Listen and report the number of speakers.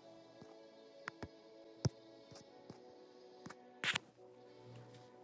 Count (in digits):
0